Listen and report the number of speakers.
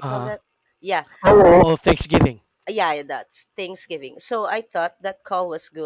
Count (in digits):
2